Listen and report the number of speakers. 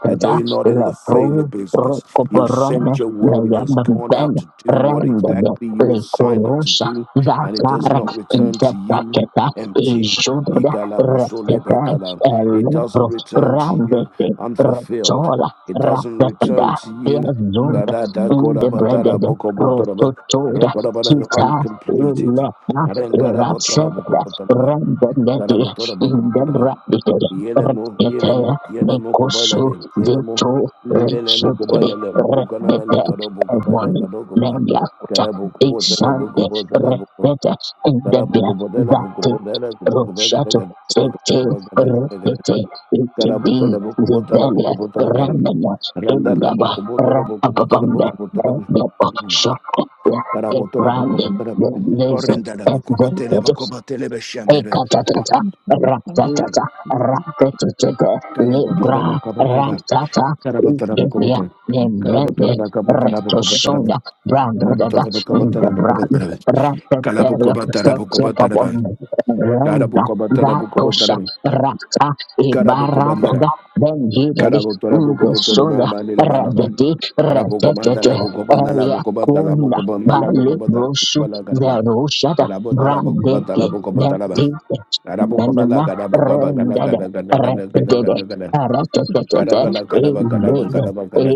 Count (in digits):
2